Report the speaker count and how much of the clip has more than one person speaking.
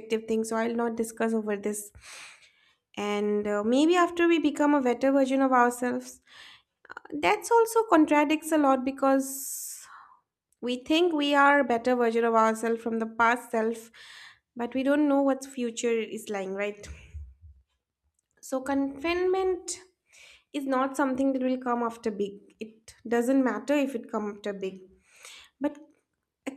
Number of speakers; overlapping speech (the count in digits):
1, no overlap